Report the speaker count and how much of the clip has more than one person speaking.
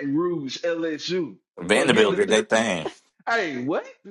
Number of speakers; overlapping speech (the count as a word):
two, about 13%